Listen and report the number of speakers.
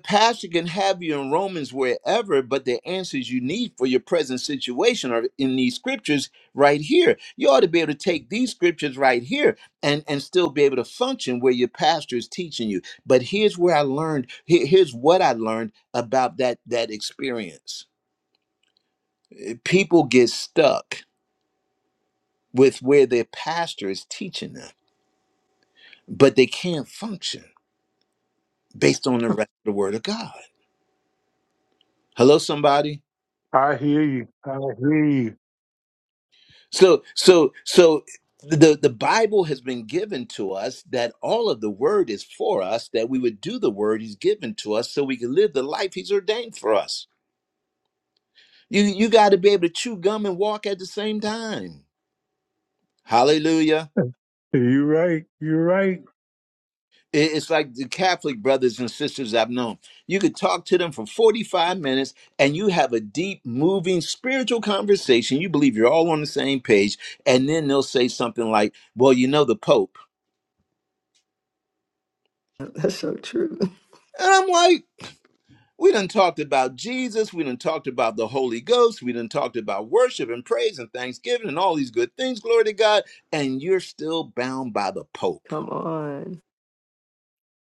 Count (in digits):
3